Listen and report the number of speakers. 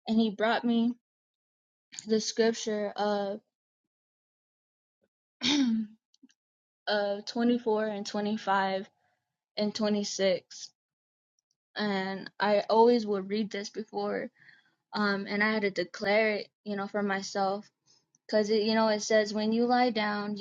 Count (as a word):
one